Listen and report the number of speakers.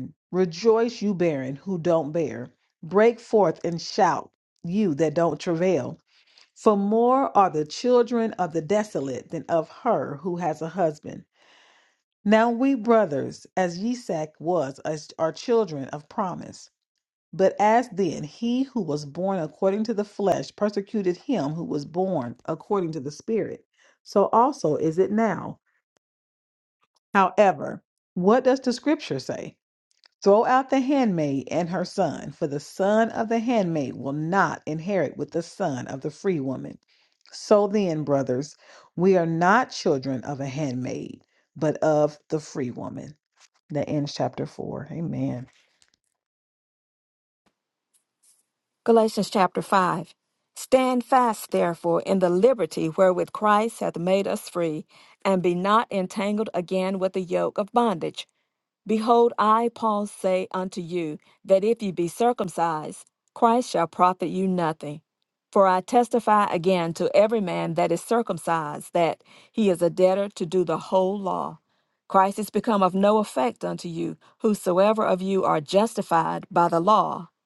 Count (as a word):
two